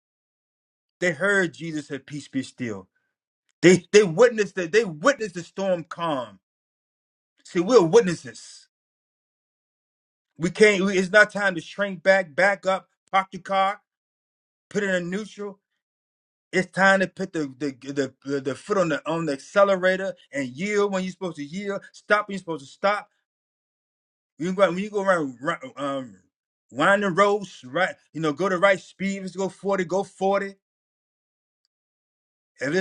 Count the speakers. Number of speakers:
one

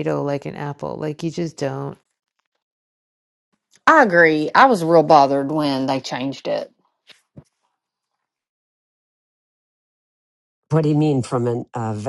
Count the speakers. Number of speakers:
three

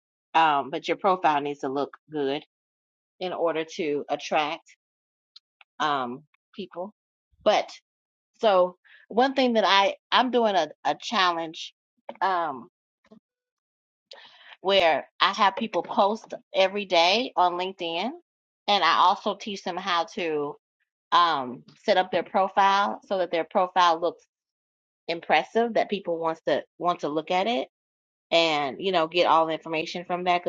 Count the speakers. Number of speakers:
one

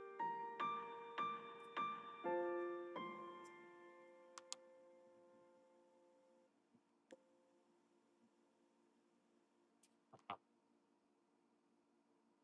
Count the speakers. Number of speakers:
zero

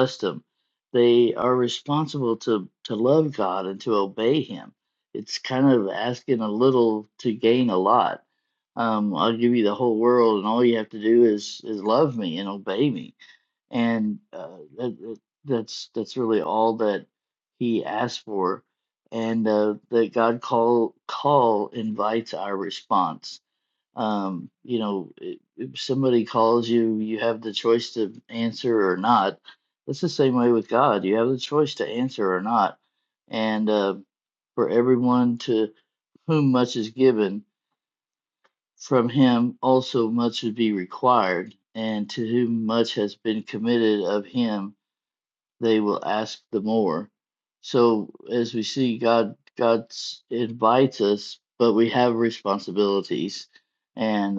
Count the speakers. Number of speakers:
one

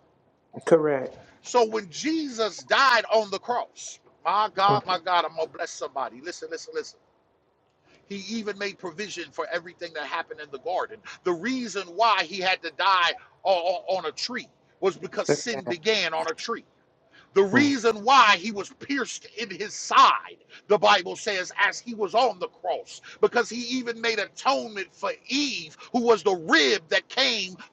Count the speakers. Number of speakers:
two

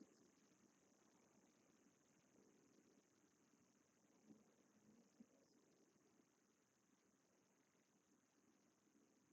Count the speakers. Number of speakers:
zero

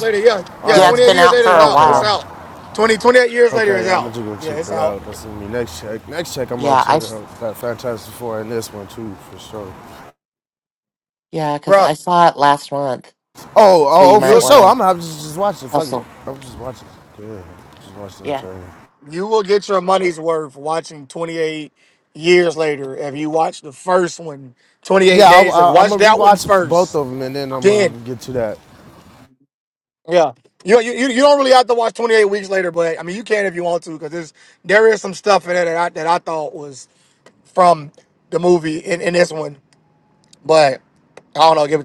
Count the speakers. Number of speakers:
three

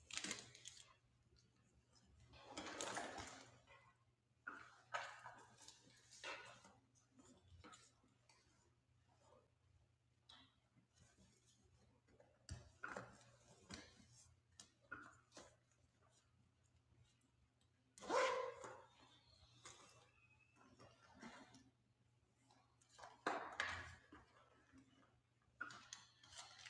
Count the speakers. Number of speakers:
zero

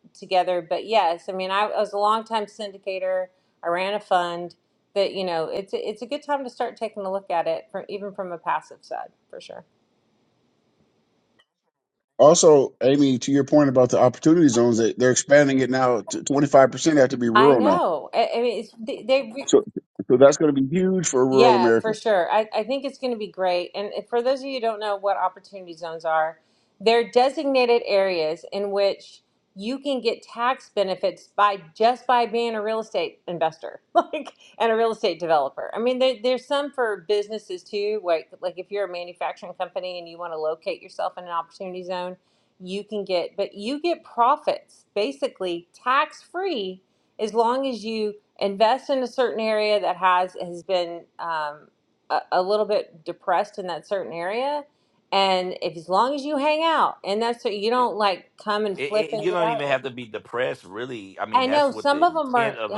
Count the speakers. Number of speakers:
three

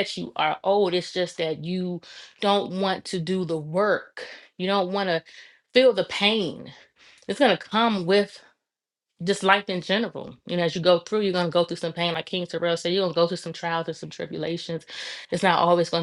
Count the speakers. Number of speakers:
one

